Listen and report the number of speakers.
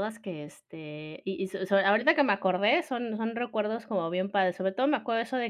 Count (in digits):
1